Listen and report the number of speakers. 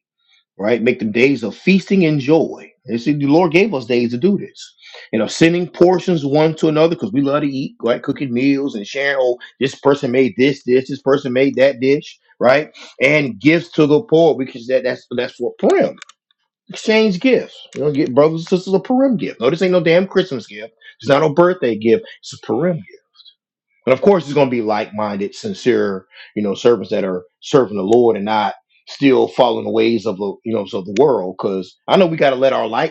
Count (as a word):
one